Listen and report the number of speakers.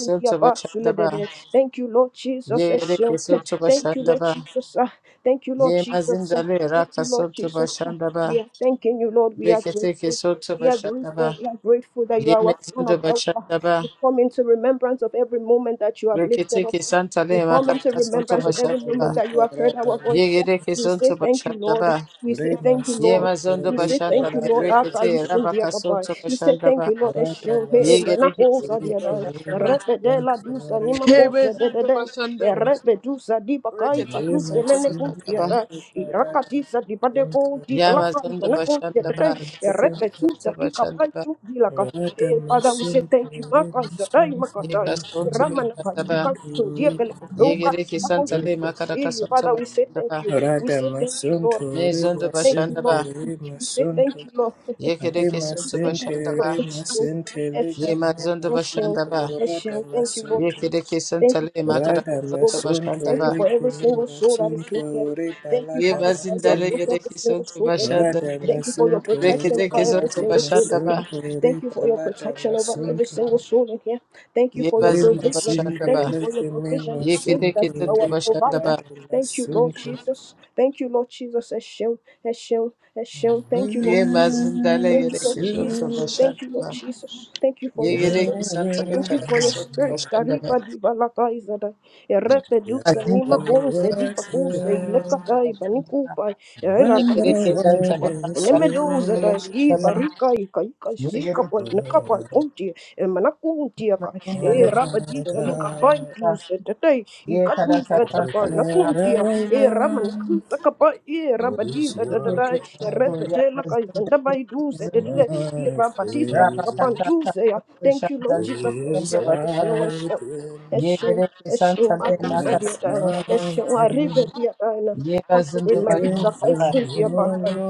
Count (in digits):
3